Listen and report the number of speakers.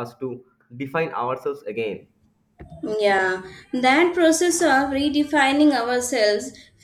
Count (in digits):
2